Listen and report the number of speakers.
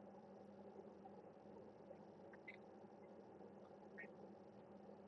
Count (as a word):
zero